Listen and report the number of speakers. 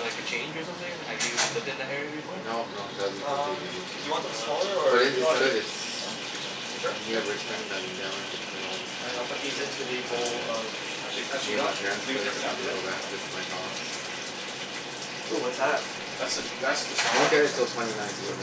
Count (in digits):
4